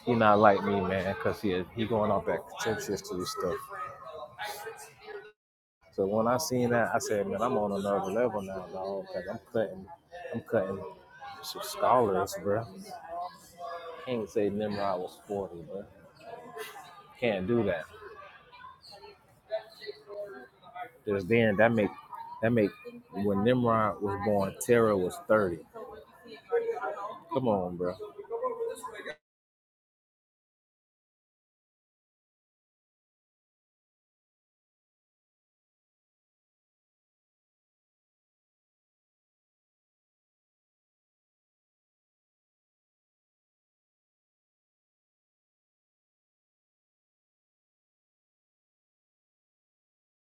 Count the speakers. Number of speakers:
1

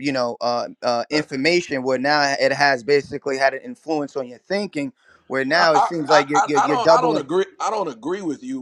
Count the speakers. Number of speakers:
2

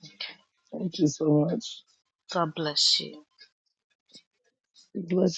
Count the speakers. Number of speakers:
2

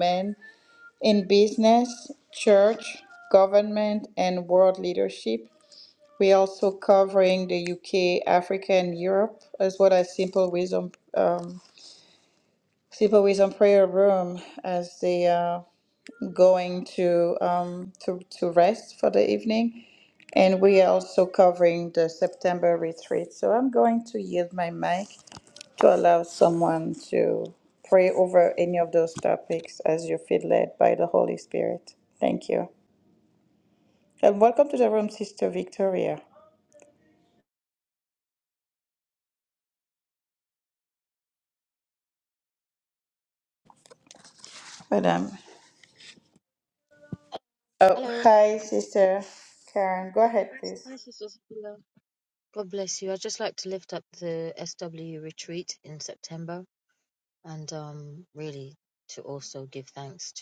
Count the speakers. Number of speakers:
2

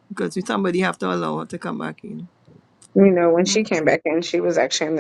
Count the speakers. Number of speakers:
2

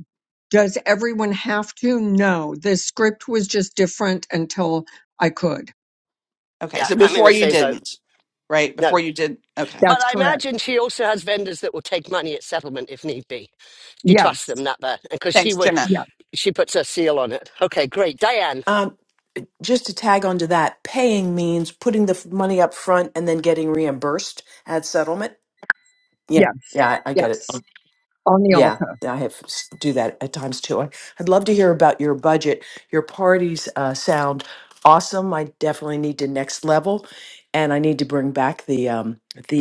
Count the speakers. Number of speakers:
4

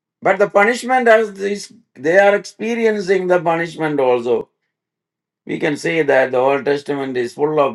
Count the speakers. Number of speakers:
1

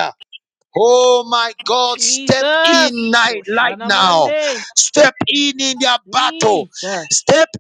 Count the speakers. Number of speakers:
2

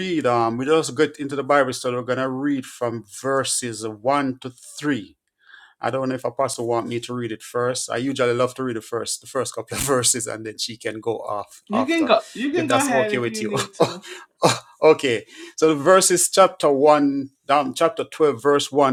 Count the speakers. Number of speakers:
2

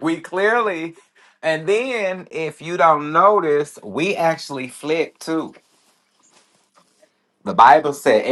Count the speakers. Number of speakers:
1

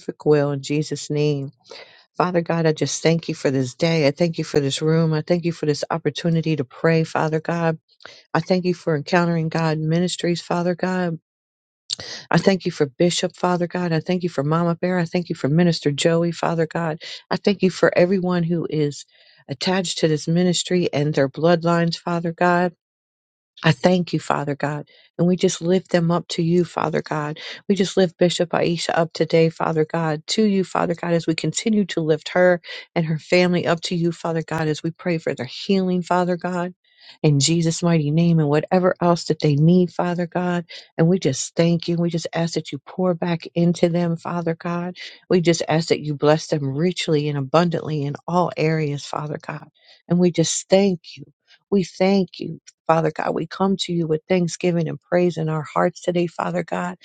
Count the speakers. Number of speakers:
1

